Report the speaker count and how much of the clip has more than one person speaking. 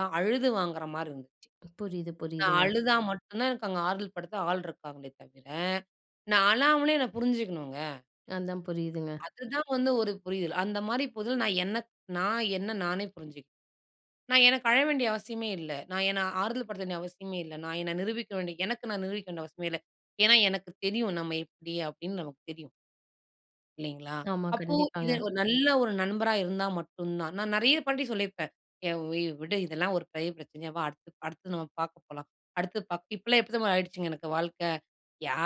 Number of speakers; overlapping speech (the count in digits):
2, about 3%